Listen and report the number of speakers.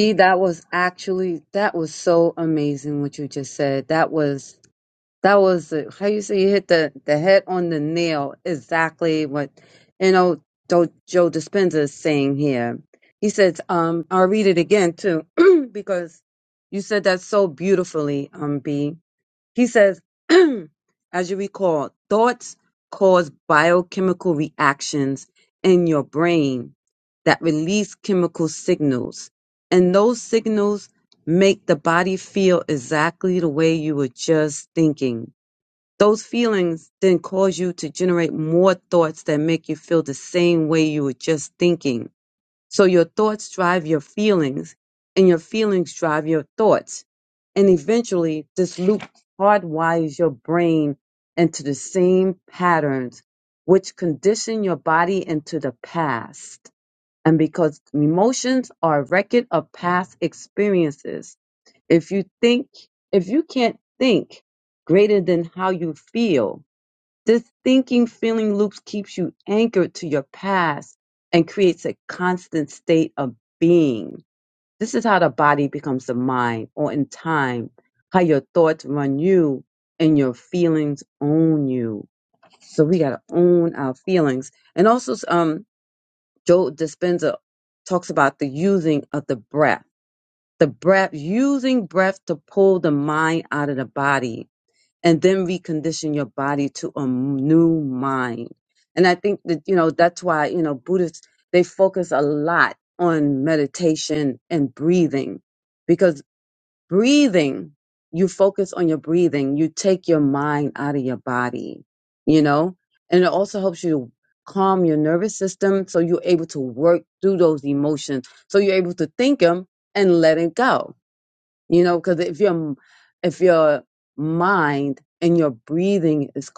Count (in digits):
1